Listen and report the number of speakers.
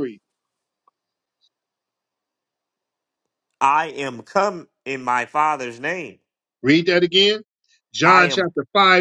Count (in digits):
2